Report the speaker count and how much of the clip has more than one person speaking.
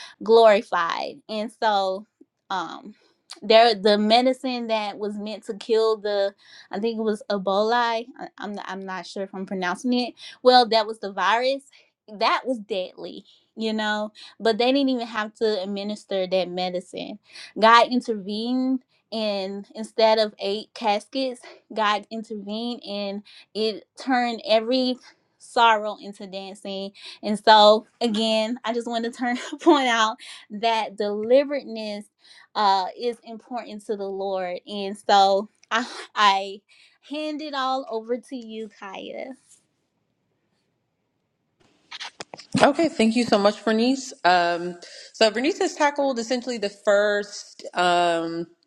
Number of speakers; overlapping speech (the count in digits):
2, no overlap